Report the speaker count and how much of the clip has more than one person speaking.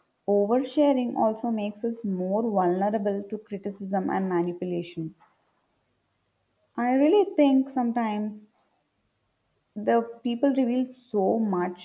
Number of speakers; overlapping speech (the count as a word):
one, no overlap